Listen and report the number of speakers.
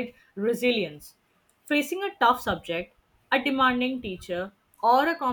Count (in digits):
1